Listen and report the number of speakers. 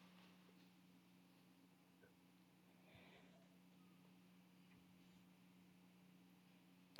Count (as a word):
zero